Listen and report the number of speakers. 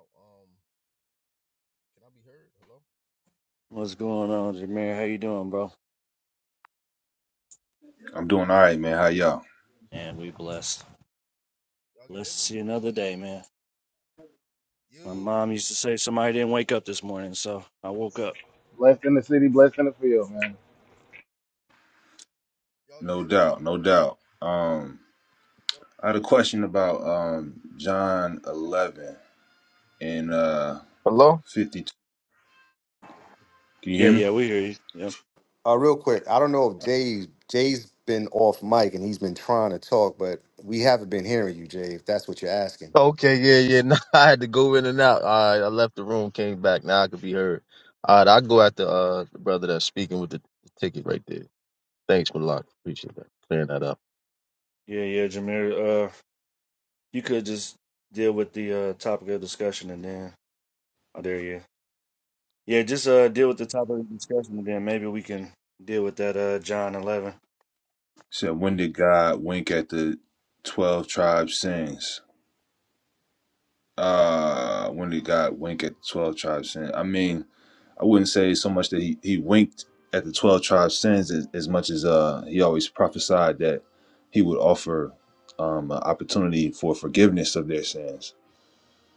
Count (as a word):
five